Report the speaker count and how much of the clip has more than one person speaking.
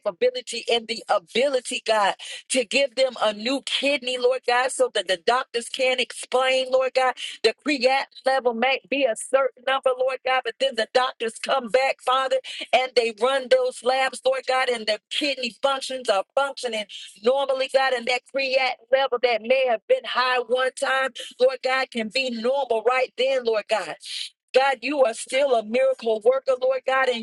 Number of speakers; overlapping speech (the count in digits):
1, no overlap